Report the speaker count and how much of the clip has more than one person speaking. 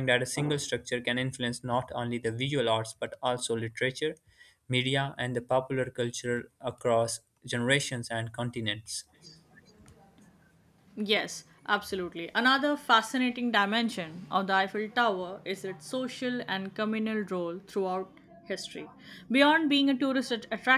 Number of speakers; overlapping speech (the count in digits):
2, no overlap